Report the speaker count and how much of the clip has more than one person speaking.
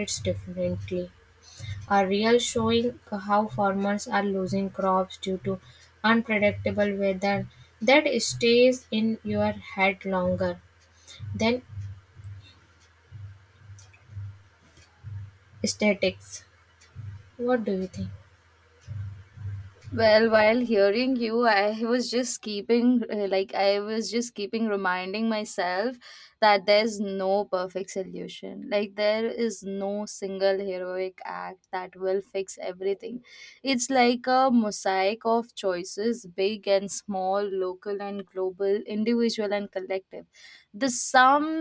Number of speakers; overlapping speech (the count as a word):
two, no overlap